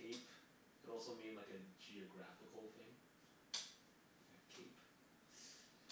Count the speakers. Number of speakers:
one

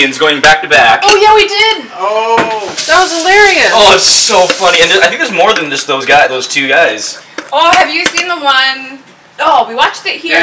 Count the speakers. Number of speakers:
four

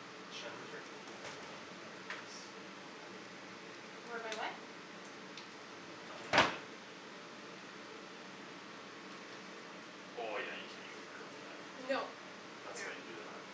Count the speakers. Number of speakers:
two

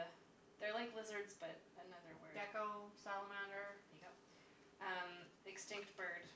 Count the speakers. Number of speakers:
two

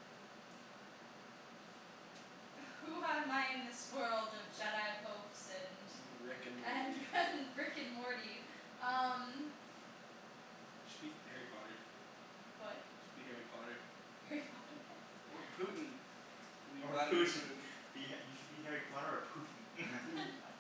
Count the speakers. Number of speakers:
three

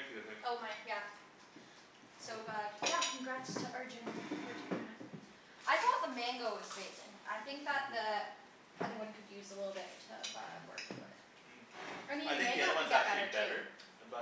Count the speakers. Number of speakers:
two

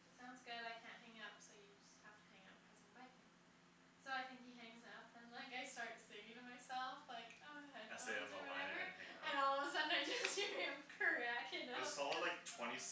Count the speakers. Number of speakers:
two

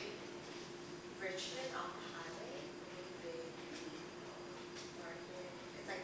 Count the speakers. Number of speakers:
one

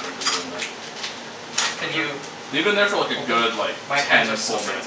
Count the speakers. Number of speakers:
two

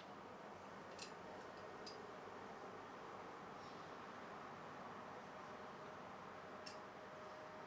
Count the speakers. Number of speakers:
zero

